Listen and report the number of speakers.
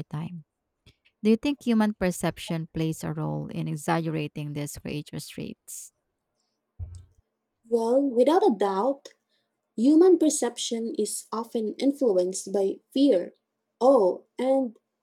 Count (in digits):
2